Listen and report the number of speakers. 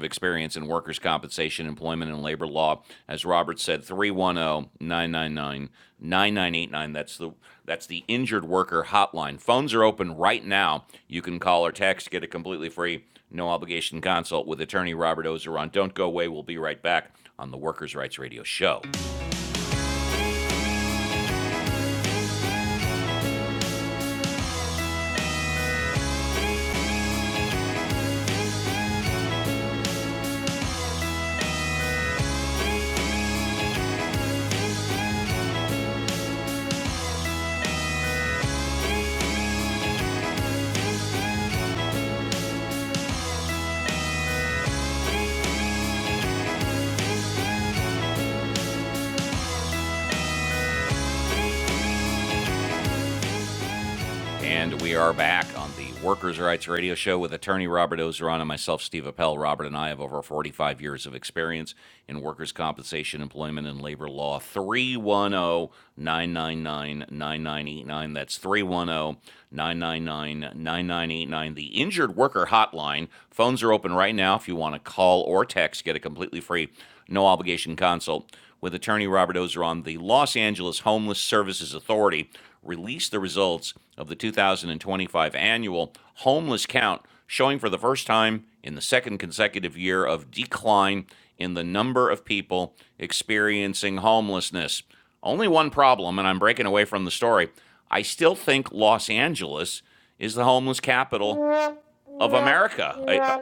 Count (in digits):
1